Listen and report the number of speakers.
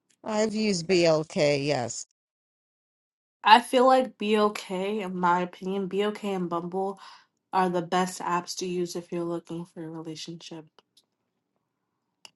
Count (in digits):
2